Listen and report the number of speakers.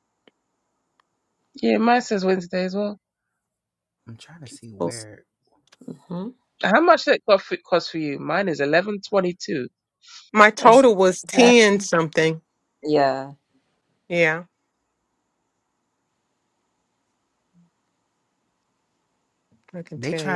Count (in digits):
4